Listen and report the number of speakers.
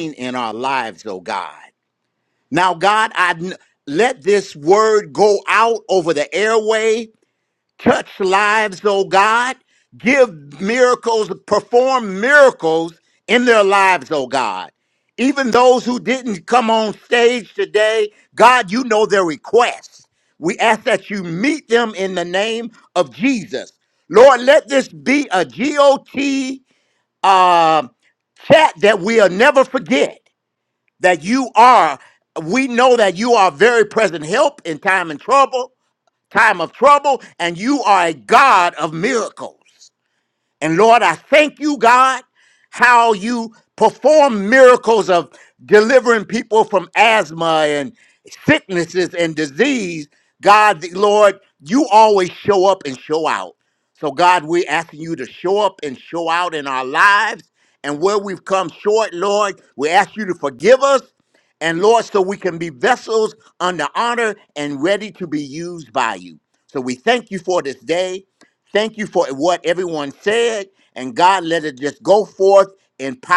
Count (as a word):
one